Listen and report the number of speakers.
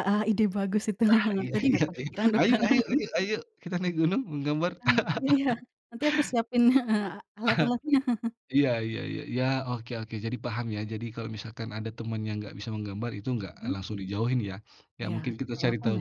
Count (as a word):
two